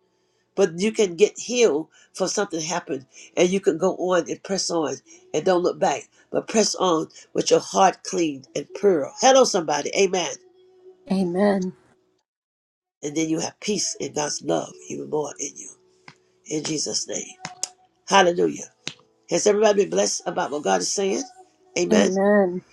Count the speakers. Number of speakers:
two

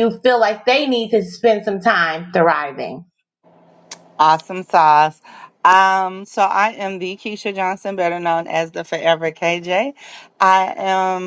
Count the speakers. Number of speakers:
two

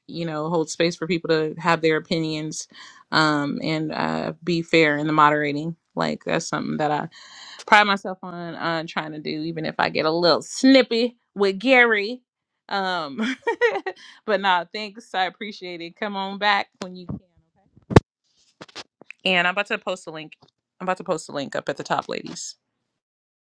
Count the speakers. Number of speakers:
one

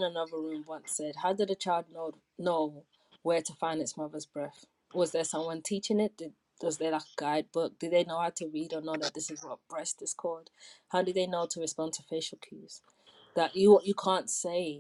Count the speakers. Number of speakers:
one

